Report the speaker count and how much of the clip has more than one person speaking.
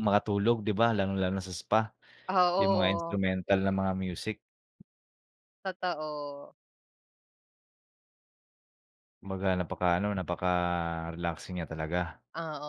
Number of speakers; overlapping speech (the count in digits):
2, about 5%